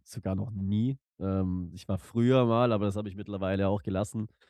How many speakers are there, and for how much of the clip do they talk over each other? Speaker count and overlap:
one, no overlap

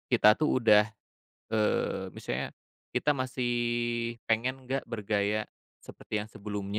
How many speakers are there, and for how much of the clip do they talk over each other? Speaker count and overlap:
one, no overlap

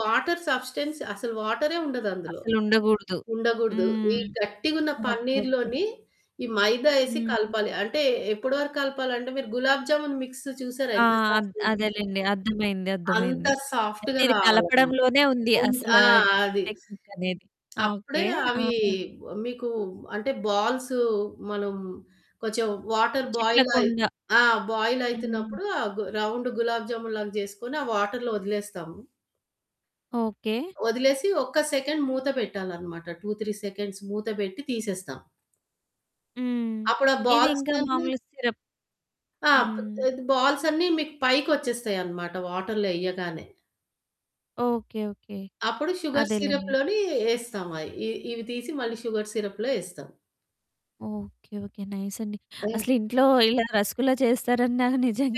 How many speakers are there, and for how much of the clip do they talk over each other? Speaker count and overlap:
two, about 12%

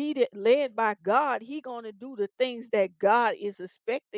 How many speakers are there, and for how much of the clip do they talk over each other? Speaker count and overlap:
one, no overlap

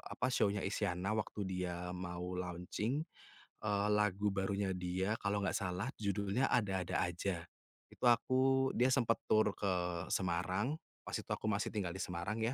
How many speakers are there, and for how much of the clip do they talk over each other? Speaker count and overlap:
one, no overlap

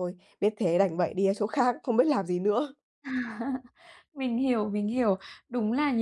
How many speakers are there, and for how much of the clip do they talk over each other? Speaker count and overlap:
two, no overlap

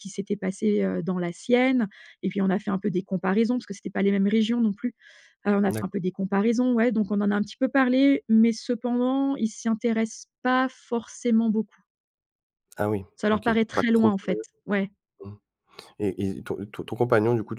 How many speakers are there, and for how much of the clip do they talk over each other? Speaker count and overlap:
two, about 5%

